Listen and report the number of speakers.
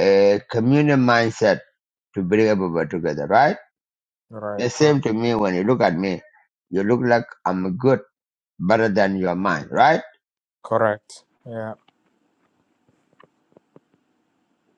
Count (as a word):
two